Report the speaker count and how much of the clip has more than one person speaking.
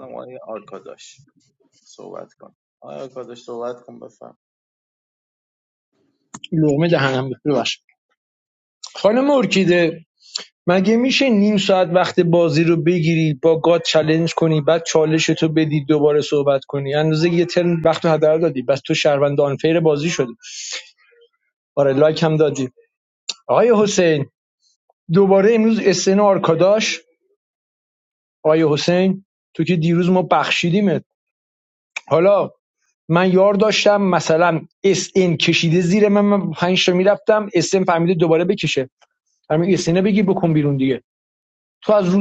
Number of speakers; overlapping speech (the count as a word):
two, no overlap